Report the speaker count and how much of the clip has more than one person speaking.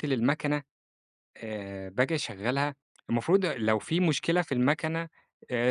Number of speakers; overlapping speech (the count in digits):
1, no overlap